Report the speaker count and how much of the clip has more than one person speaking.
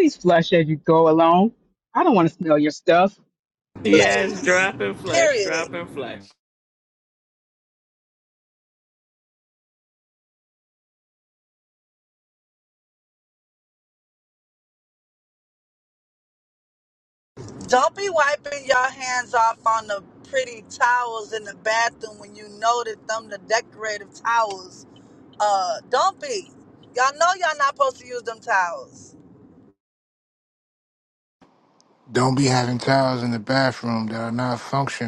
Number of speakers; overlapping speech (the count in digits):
4, about 4%